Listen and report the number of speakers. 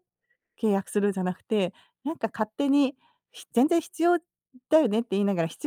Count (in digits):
1